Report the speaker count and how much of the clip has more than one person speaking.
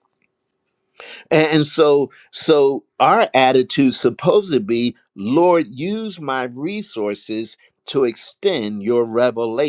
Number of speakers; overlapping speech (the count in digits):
1, no overlap